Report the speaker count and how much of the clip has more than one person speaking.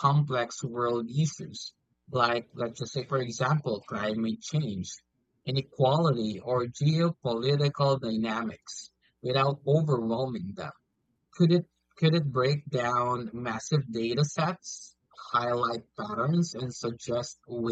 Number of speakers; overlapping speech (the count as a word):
one, no overlap